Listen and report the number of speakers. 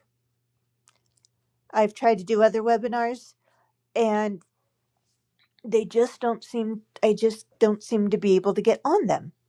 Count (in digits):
1